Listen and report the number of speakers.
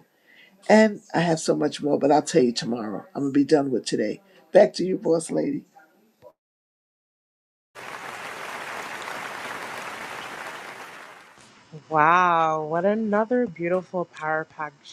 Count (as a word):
two